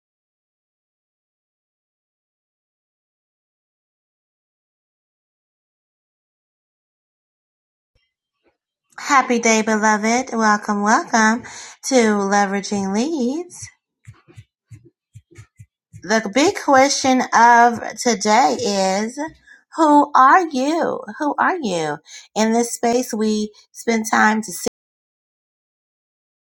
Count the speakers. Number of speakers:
1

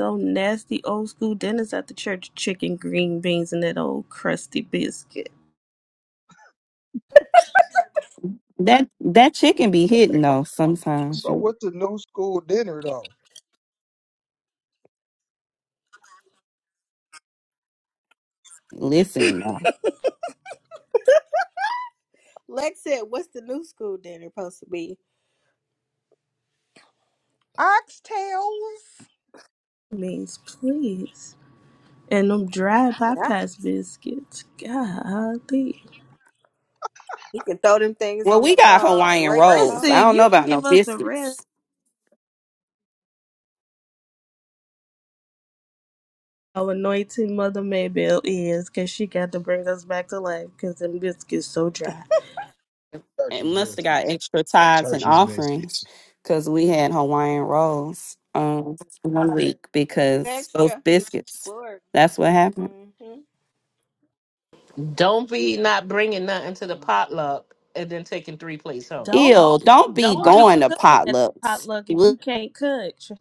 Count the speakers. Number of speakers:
6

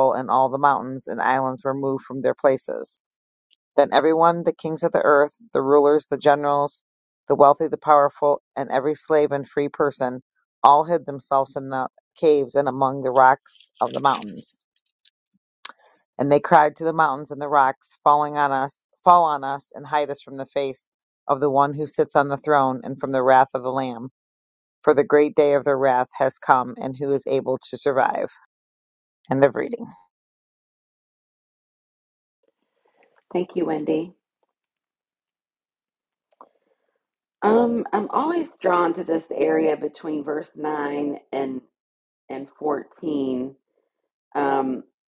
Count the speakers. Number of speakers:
2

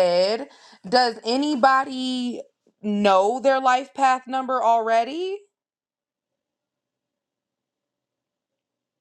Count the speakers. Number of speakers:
1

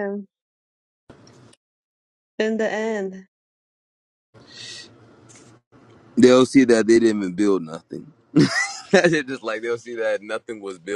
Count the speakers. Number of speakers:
2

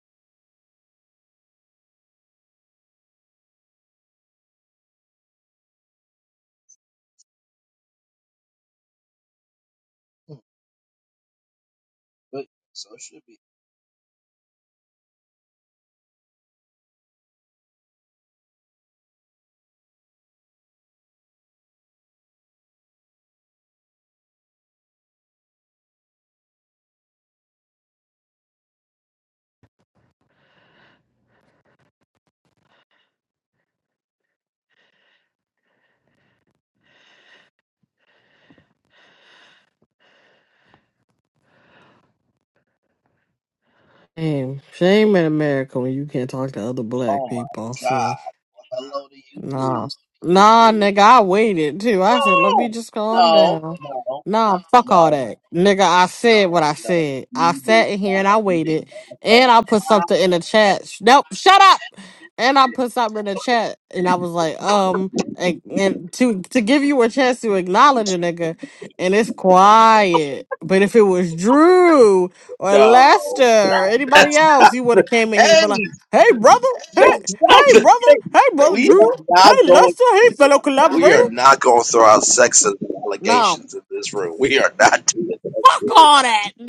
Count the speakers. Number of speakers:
2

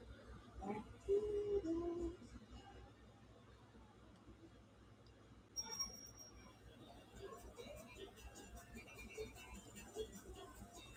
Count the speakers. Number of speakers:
0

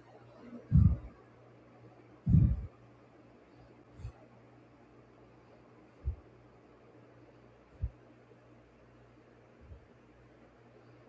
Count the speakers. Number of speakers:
0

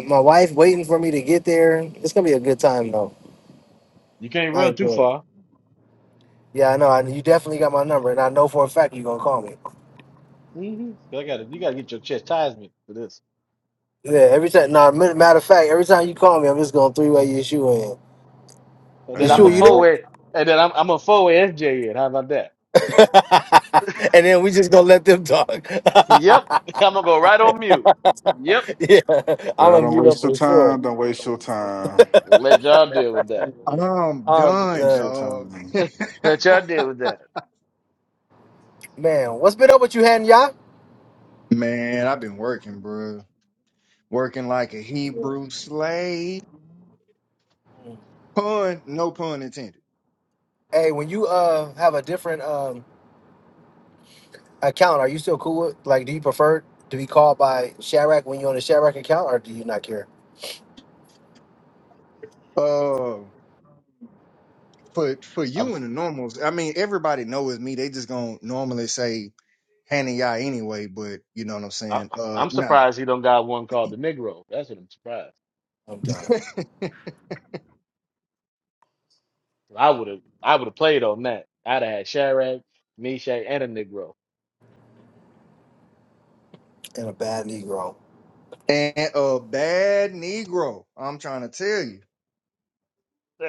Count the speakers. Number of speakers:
4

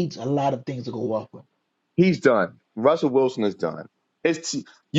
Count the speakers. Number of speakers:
2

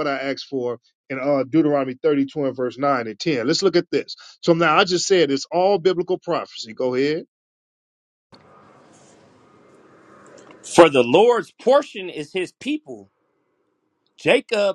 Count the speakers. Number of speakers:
2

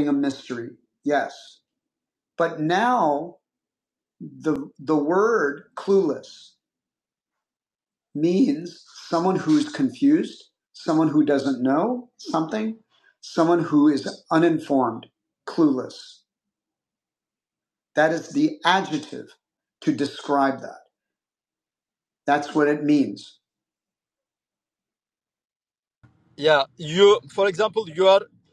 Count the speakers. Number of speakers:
2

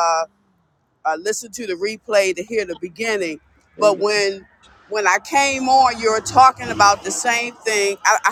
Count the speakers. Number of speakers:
1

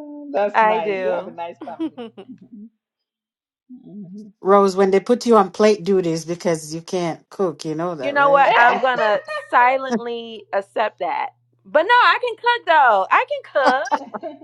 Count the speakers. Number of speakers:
3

